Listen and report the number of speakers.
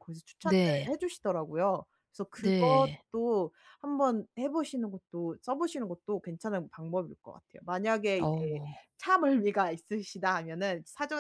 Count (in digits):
2